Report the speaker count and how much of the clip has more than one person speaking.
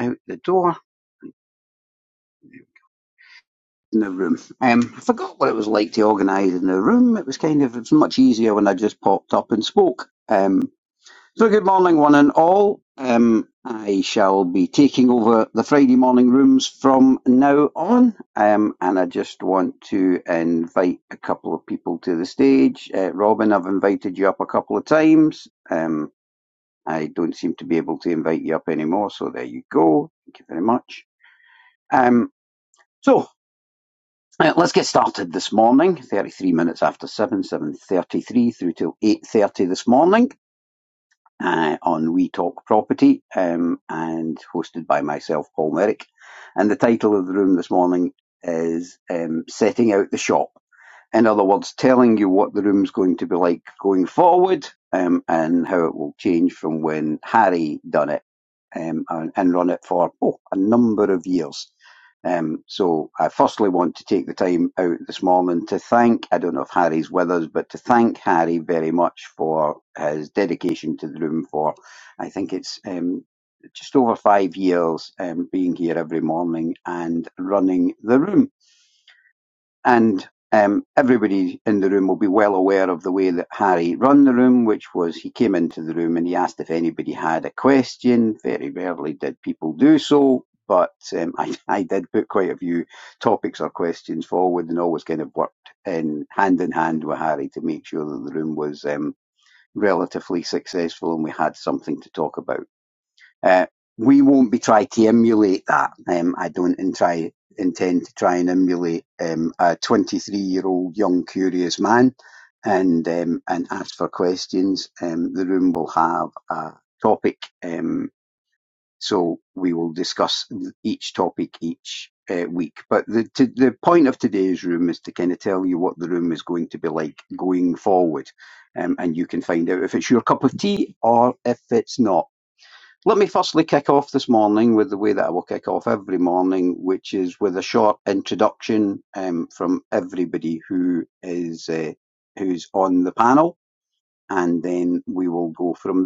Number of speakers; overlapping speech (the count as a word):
one, no overlap